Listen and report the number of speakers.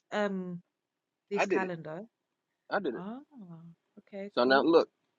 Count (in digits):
2